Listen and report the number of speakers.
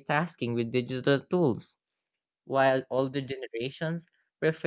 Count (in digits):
1